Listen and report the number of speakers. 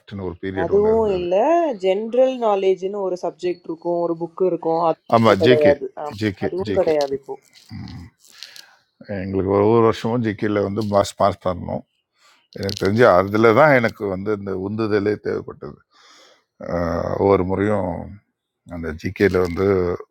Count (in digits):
2